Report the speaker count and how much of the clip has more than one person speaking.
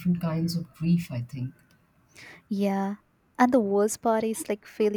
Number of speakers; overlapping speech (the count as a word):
two, no overlap